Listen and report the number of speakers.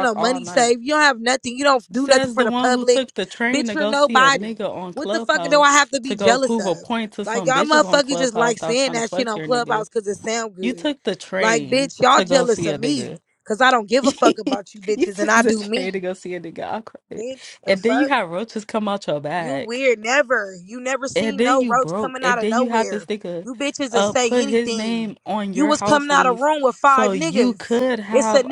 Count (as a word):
two